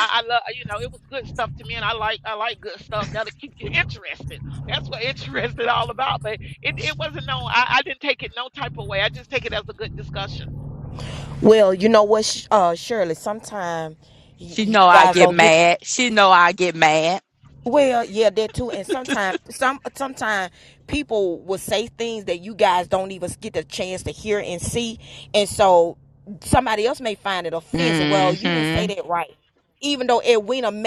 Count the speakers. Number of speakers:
three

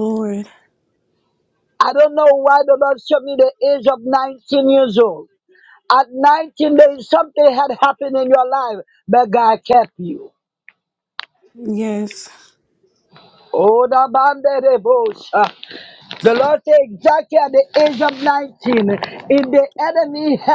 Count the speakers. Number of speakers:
two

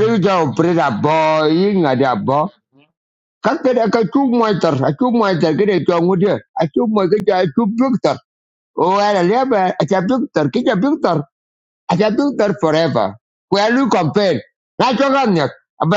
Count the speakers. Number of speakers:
one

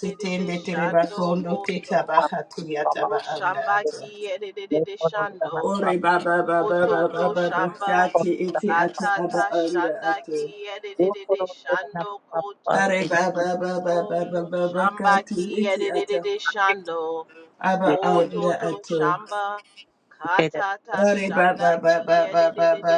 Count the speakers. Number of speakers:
two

